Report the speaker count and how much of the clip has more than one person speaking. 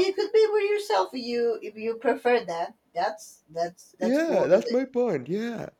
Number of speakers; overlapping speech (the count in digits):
2, about 13%